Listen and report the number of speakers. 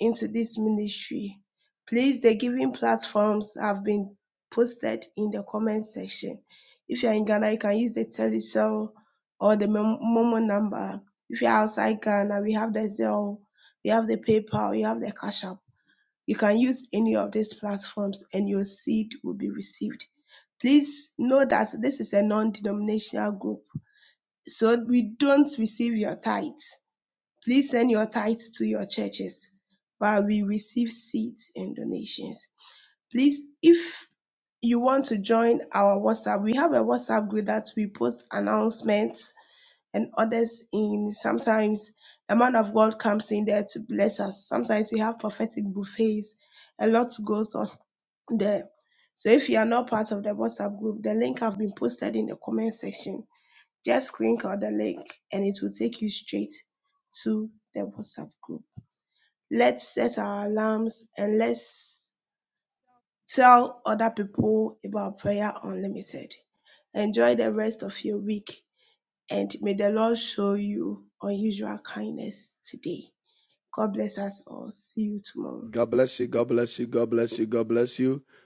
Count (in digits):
2